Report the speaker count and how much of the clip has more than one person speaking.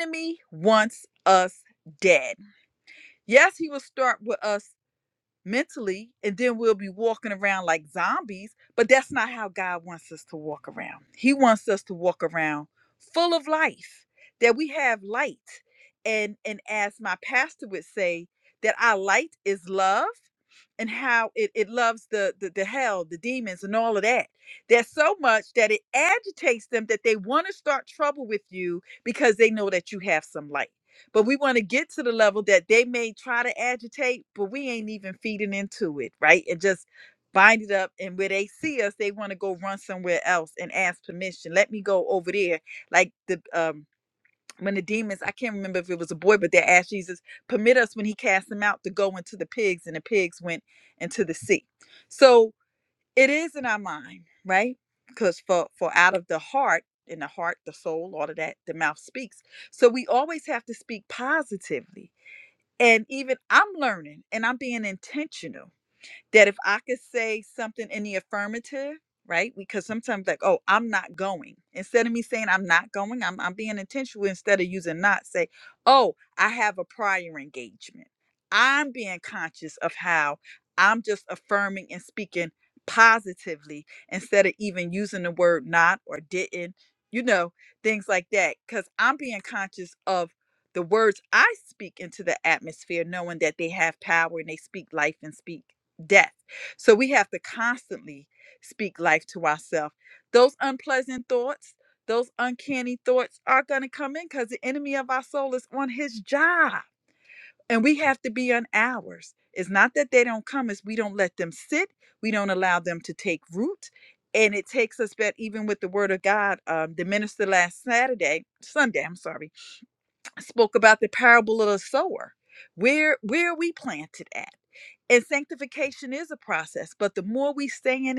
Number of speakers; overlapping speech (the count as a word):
one, no overlap